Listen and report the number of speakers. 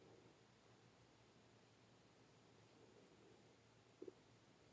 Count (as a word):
zero